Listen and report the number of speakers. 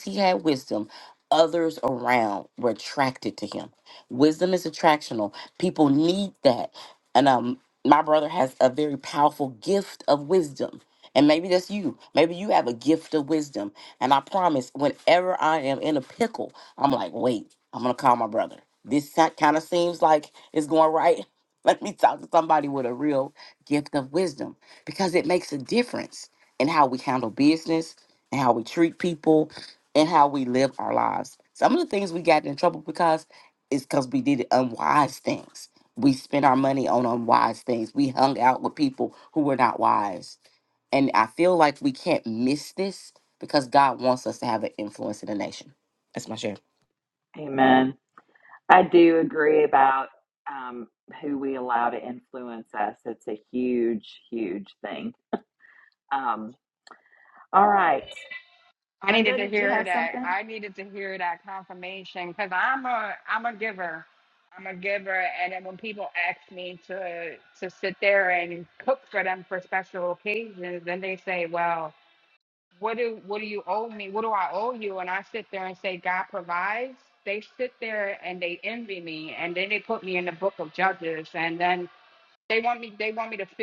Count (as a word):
three